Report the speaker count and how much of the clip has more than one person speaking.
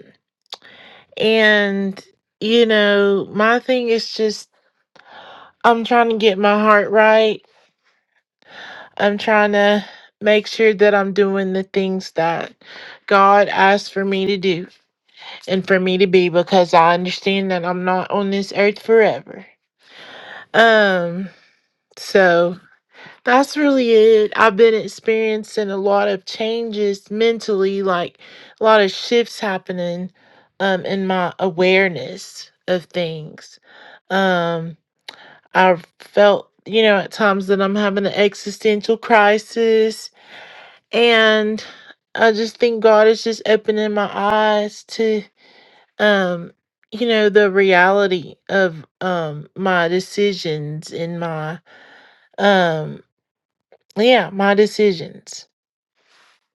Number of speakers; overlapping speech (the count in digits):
1, no overlap